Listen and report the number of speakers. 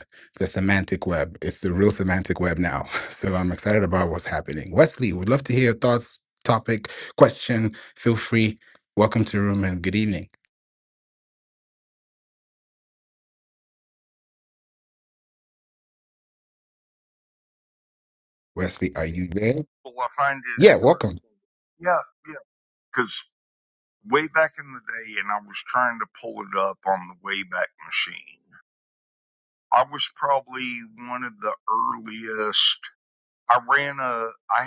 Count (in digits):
2